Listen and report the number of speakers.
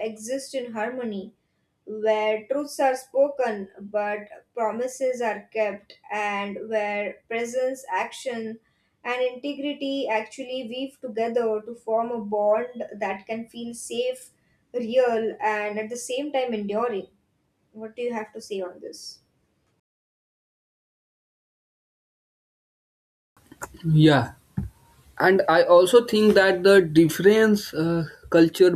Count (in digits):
2